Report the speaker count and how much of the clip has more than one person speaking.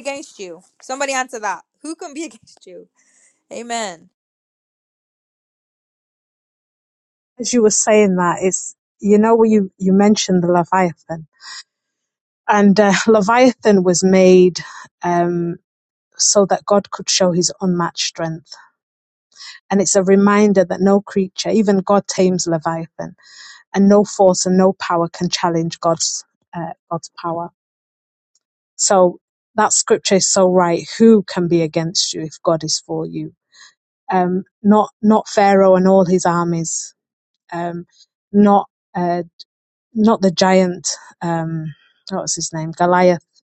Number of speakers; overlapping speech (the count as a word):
two, no overlap